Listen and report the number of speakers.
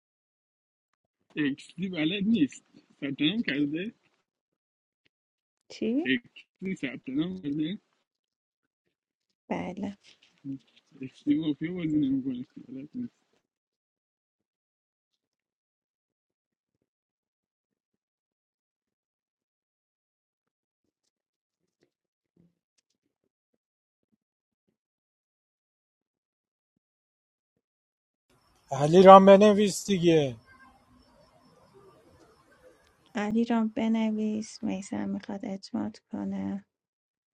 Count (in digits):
3